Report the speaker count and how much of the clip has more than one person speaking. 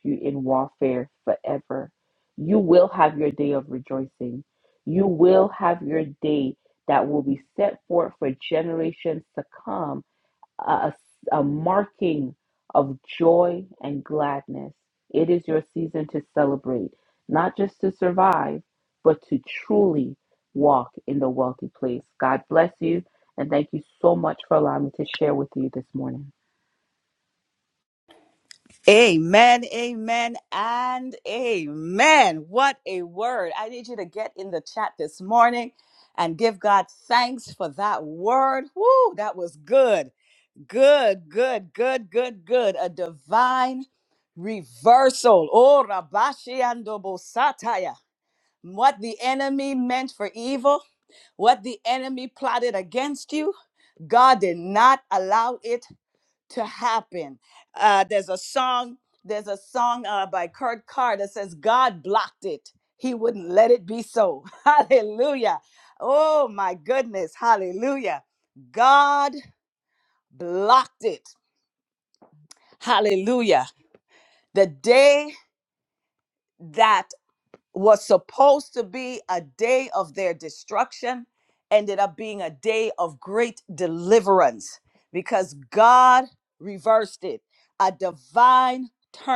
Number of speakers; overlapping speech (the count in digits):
2, no overlap